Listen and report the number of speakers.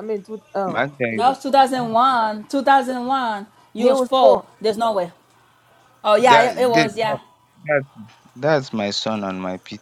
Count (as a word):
three